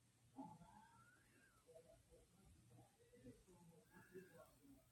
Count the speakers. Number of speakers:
0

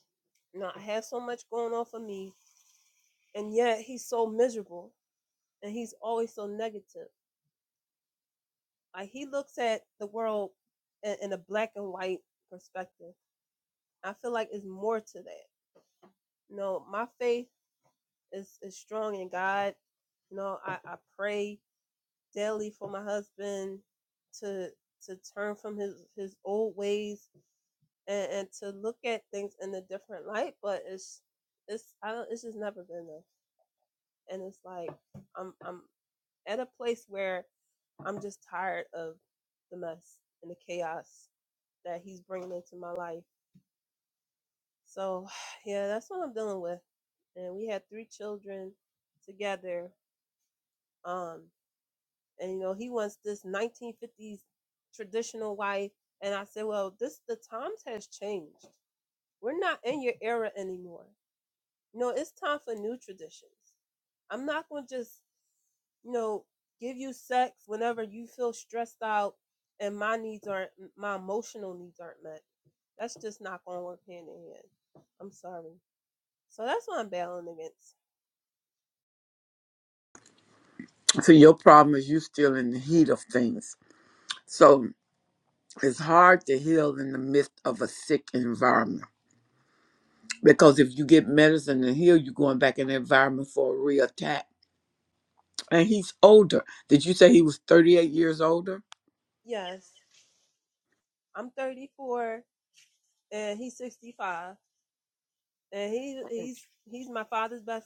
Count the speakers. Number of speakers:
2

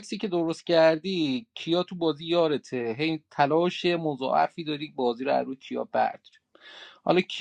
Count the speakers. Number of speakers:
1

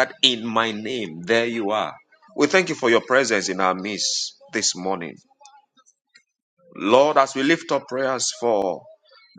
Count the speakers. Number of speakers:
1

